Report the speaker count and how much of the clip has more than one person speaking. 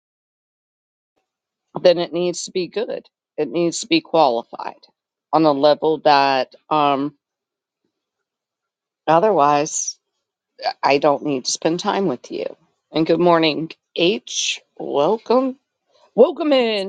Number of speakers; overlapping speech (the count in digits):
1, no overlap